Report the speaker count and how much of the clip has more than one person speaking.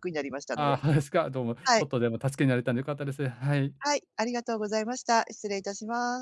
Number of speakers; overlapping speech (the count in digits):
2, about 7%